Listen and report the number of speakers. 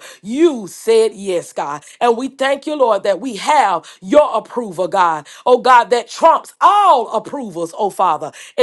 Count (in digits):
1